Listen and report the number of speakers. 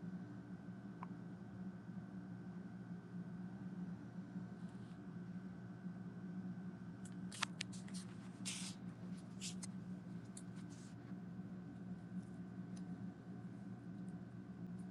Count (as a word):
zero